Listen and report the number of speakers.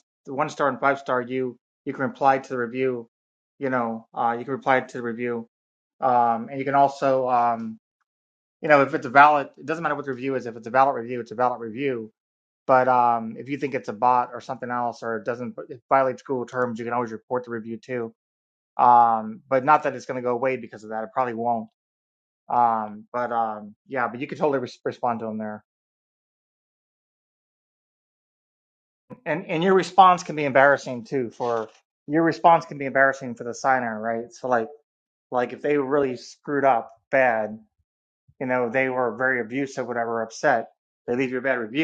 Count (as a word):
one